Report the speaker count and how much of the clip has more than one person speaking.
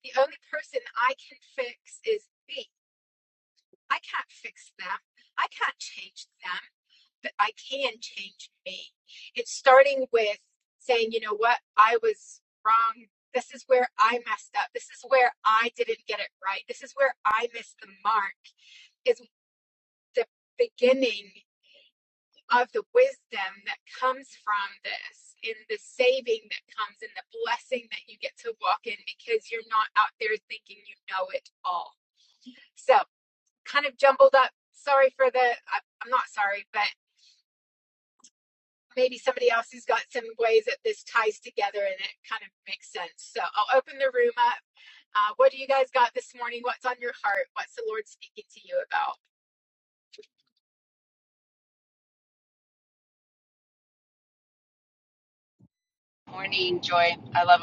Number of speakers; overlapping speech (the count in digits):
2, no overlap